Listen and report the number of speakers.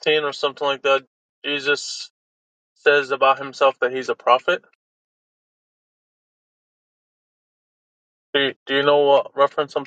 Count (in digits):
1